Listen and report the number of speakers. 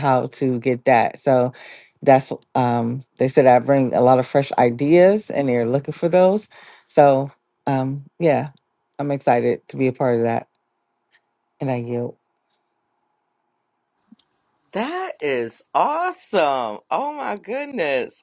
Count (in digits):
2